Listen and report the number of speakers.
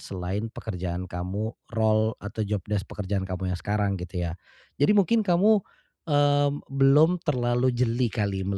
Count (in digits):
1